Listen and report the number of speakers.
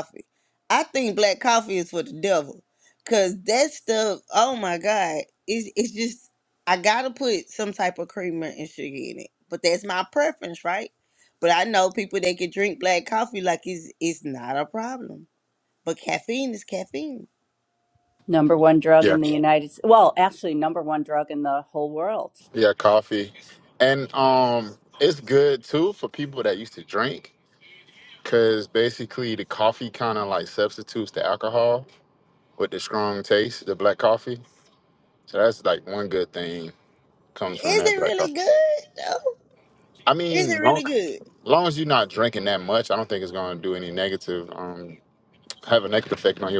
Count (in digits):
3